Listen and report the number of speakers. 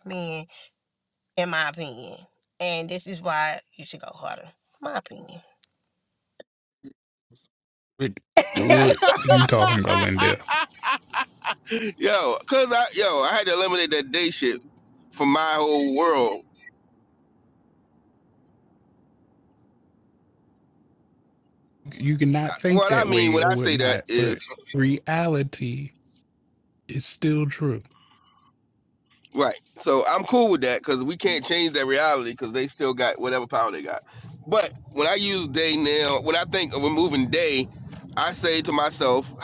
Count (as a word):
three